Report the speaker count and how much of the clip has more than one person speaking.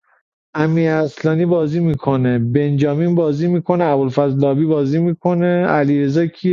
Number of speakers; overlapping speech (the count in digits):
1, no overlap